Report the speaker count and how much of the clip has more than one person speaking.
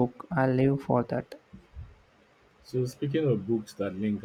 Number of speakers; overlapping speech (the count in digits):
2, no overlap